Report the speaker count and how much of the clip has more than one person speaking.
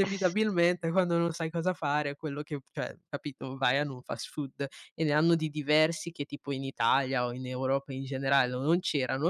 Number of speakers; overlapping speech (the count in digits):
1, no overlap